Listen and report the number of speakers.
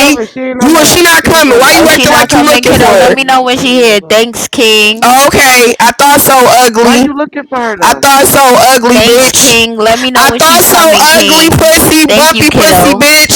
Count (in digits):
3